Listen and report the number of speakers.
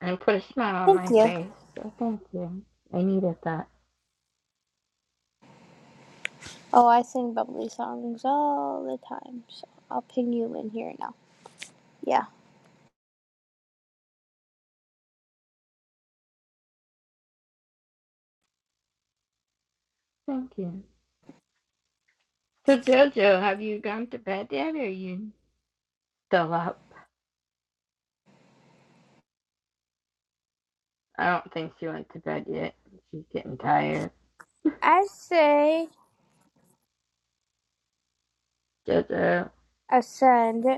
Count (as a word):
two